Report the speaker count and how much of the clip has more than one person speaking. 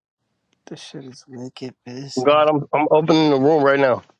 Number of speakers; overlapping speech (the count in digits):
2, about 7%